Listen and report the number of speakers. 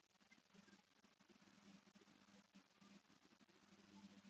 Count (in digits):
0